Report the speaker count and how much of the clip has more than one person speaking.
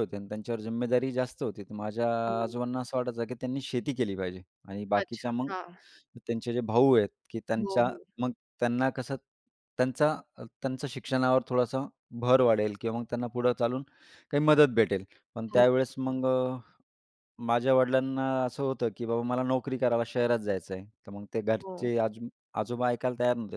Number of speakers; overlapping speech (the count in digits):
2, about 8%